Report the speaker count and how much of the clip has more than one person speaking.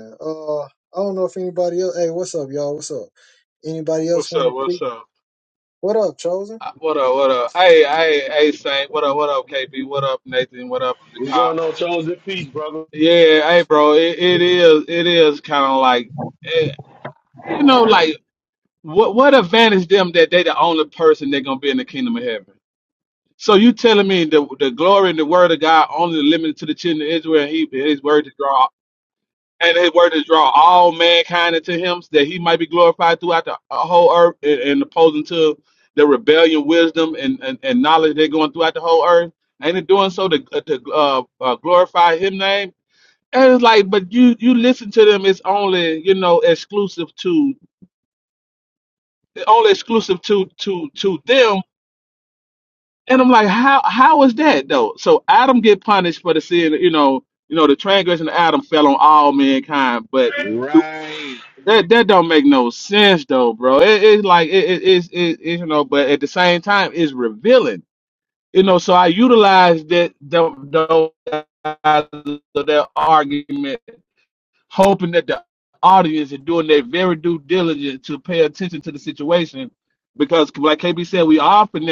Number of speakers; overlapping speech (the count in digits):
3, about 1%